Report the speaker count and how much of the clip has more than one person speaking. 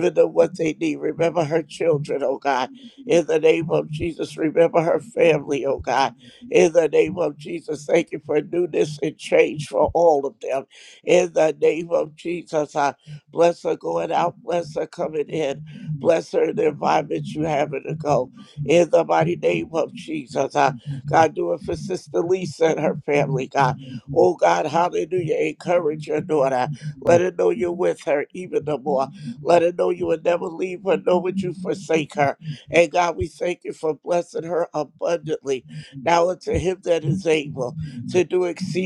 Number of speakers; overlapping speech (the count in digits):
1, no overlap